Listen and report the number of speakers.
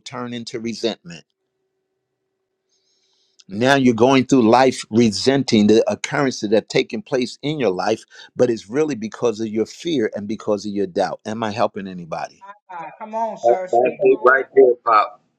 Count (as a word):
three